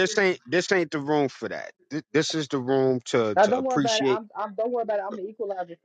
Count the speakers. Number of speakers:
2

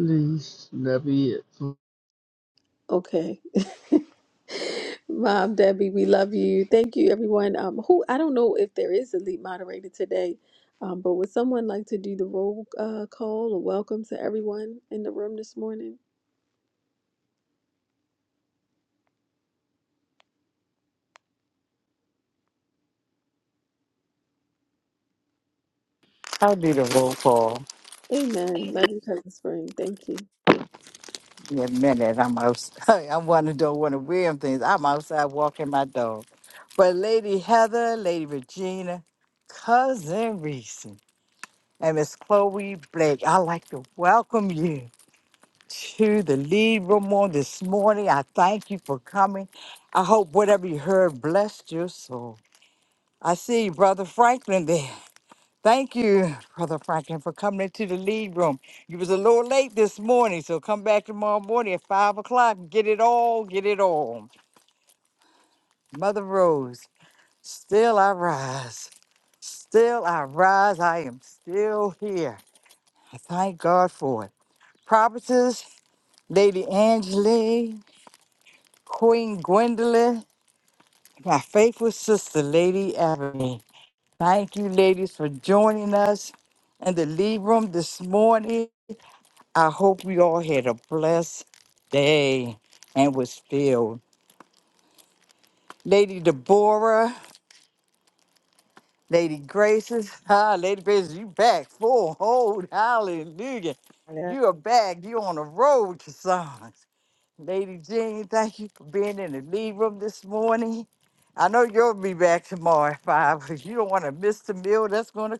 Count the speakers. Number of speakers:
3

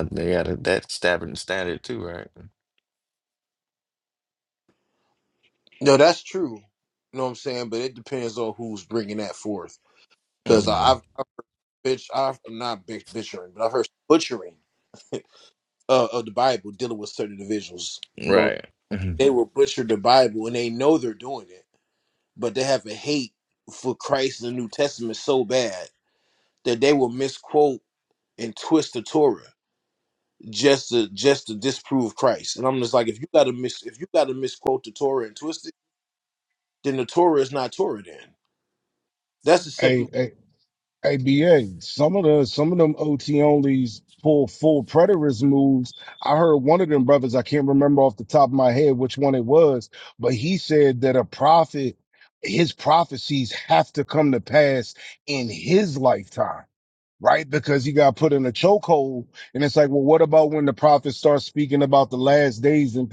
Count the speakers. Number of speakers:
3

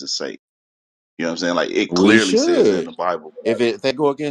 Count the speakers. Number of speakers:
2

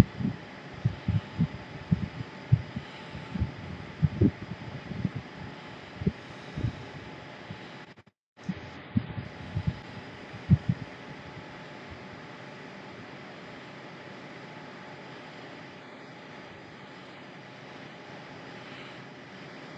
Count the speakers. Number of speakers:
0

